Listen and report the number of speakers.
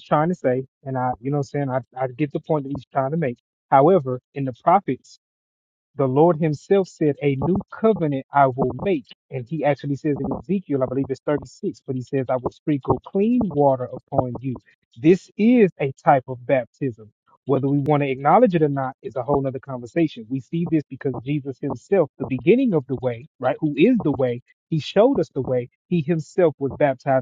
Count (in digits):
1